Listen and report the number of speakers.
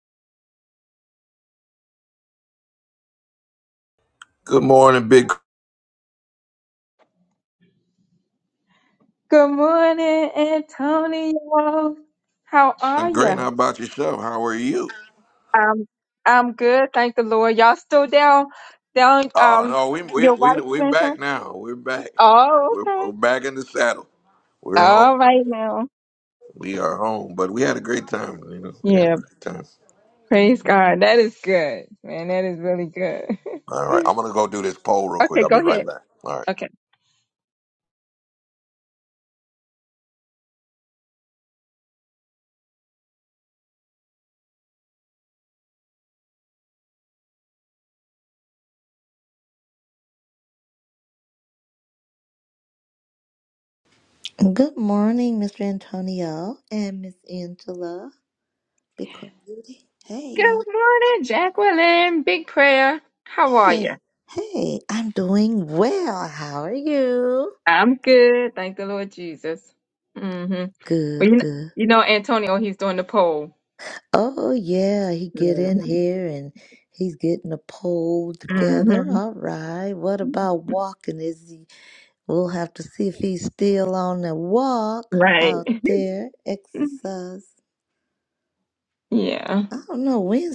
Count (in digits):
3